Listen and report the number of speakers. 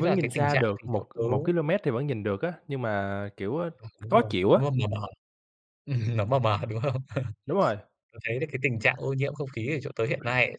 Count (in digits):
2